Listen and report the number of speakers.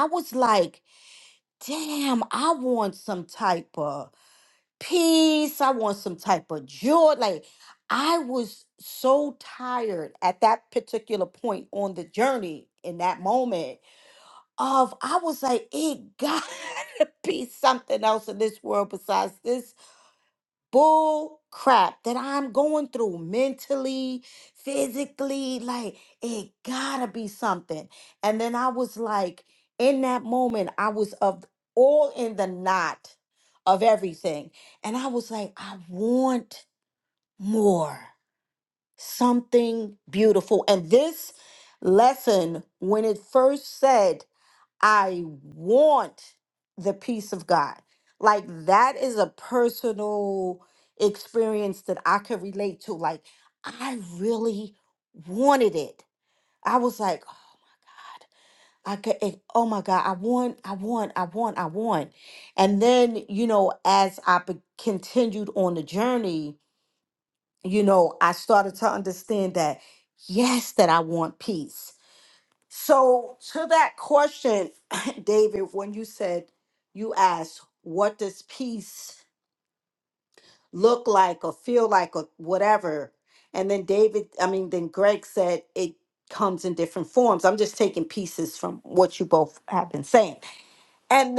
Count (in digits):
1